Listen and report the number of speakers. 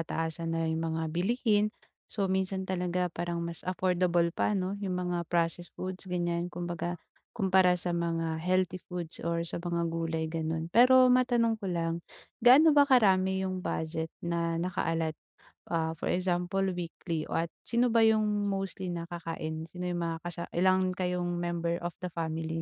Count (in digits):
1